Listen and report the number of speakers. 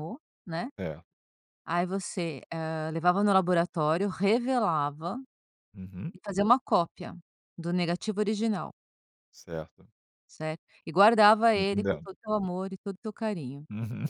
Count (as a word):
two